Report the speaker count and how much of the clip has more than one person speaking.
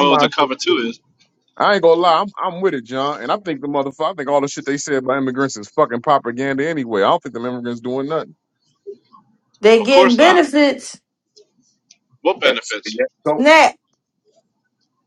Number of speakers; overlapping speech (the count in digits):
3, about 11%